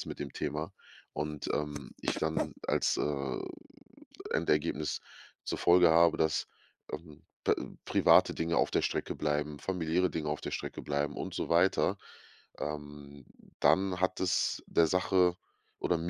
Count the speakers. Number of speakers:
1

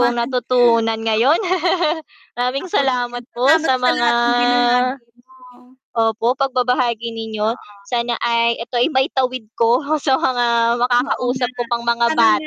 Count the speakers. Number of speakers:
2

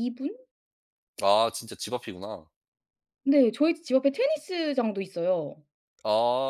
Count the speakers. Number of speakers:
2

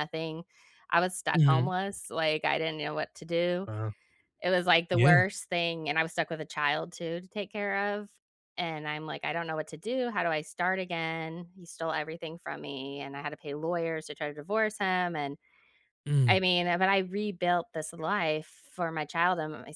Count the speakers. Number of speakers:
2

